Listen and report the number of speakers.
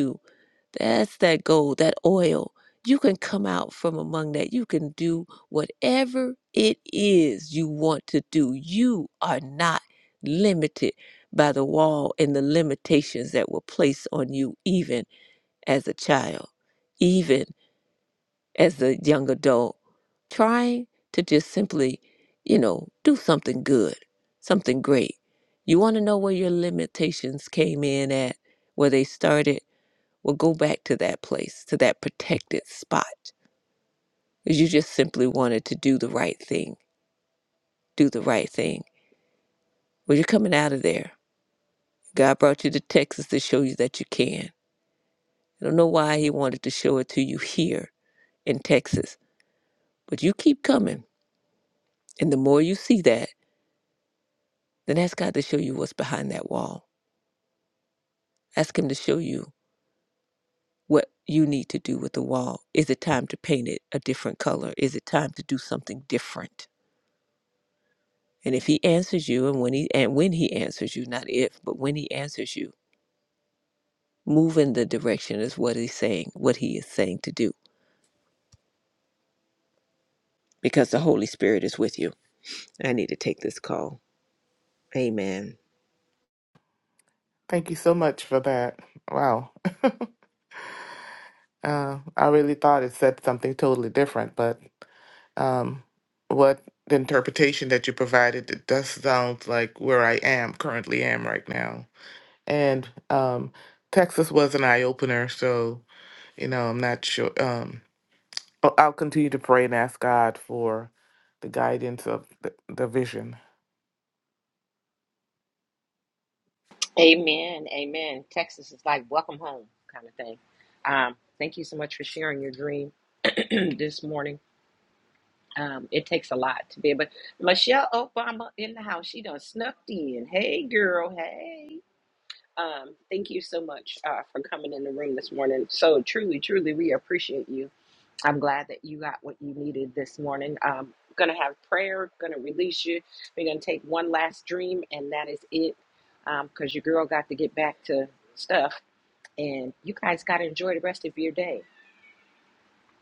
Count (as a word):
three